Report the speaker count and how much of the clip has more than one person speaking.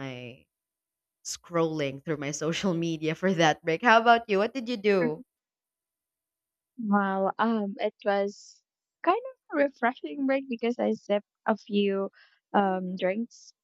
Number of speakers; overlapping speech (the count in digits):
2, no overlap